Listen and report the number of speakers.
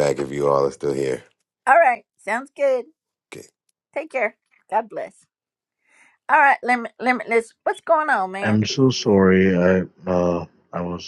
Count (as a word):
three